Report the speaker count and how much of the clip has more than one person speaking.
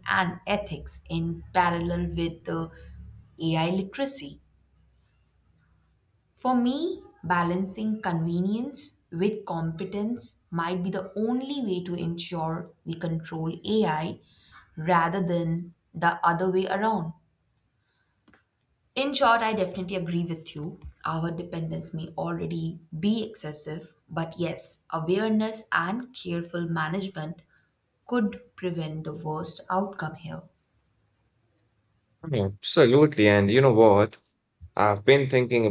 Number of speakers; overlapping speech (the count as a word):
two, no overlap